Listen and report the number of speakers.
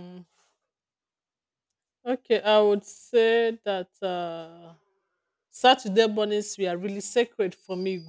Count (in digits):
1